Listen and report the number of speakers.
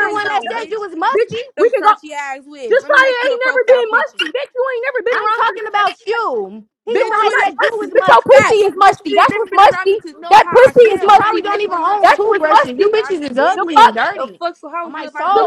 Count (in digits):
3